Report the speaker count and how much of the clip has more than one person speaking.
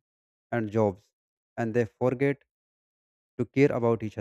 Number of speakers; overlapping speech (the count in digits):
1, no overlap